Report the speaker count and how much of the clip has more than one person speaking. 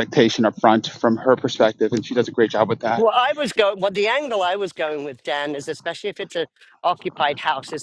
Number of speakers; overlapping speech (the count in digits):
2, about 1%